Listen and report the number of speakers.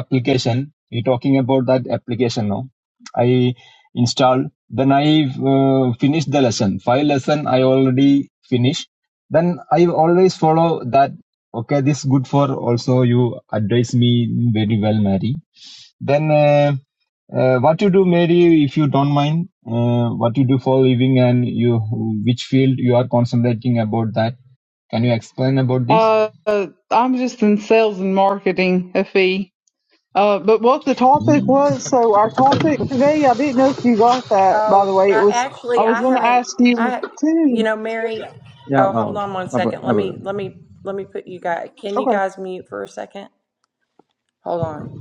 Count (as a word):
three